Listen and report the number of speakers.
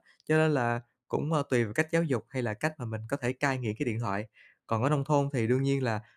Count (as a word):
one